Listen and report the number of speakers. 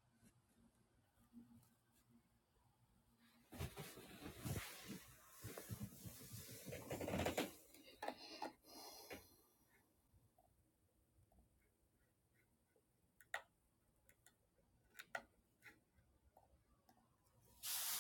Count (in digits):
0